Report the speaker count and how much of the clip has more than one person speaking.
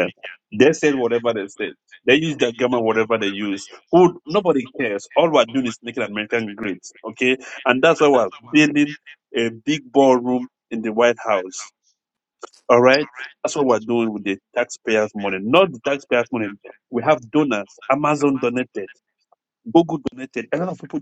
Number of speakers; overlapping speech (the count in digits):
1, no overlap